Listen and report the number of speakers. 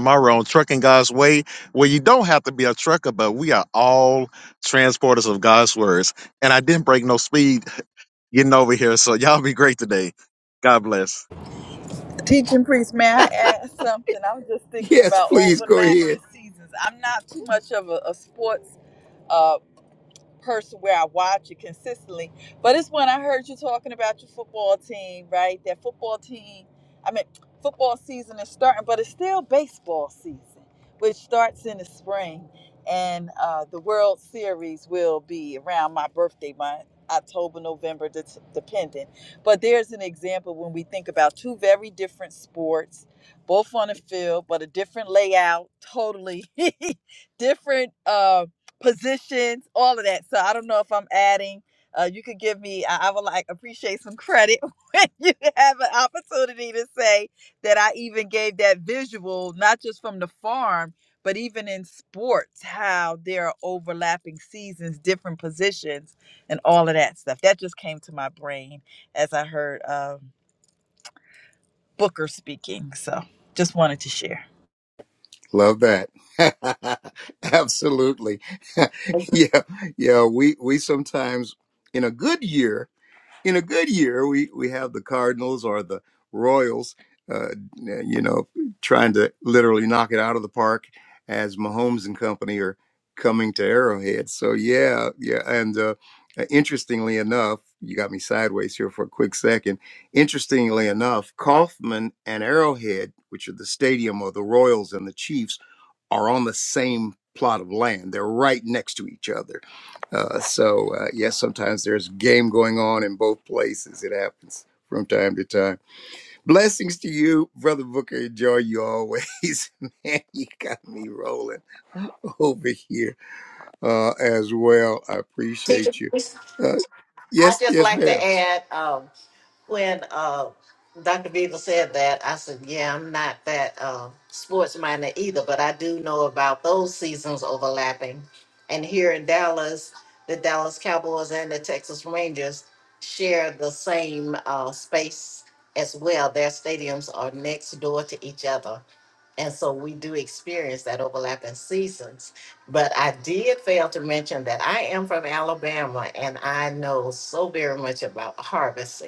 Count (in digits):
4